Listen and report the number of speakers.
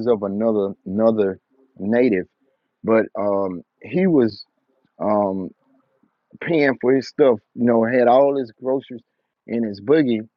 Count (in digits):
1